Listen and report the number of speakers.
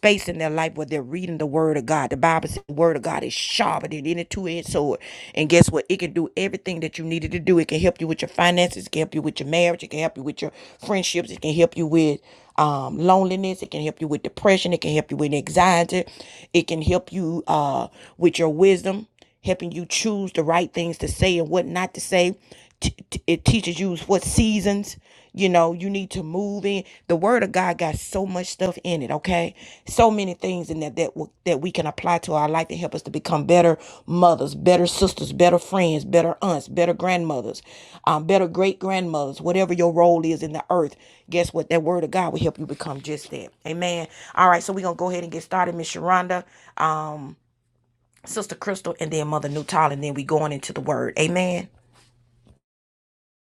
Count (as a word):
one